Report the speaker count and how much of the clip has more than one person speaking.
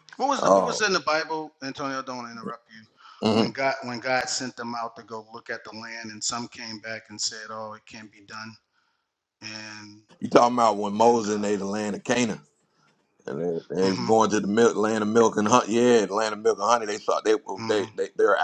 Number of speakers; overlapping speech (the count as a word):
two, about 10%